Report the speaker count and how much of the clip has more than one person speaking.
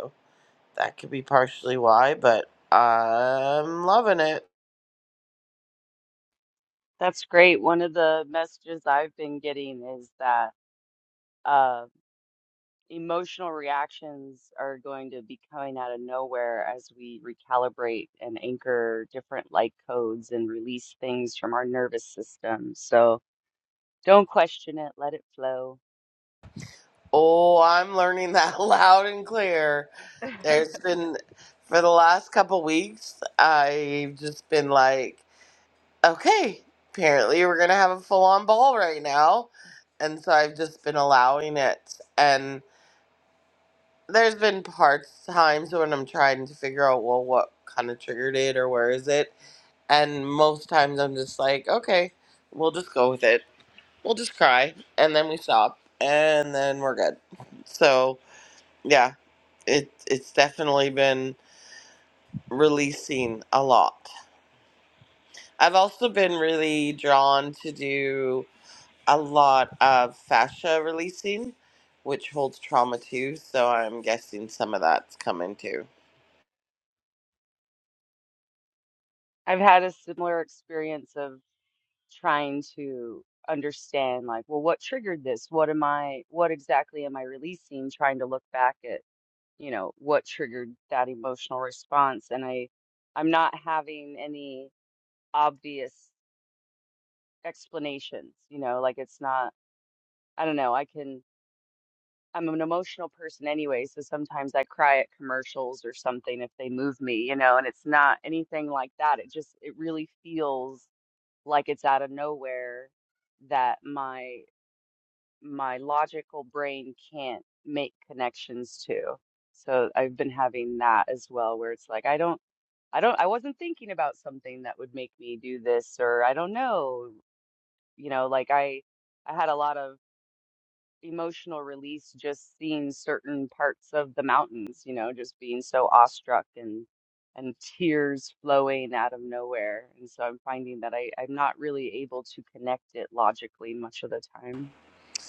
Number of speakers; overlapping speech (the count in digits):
2, no overlap